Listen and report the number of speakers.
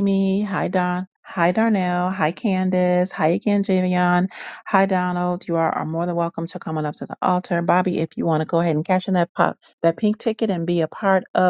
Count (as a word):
one